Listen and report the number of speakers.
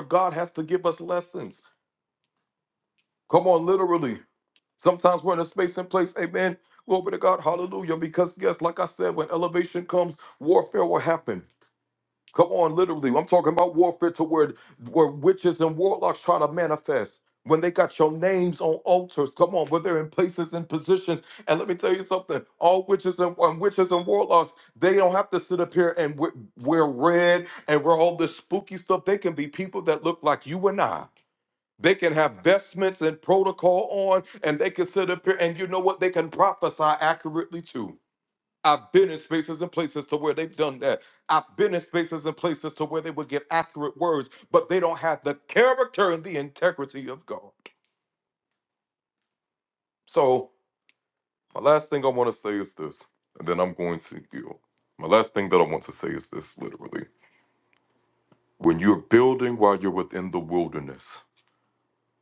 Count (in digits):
1